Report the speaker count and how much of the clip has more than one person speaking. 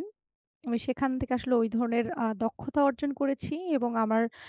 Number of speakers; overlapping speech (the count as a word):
one, no overlap